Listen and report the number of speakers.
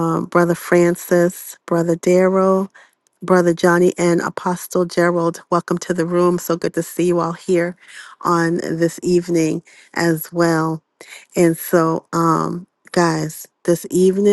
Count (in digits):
1